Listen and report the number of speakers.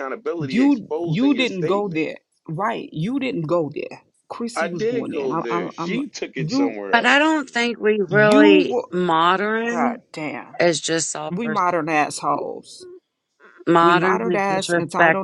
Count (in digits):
3